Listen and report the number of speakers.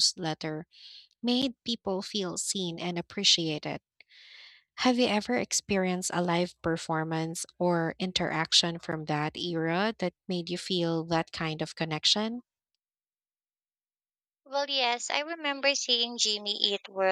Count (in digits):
2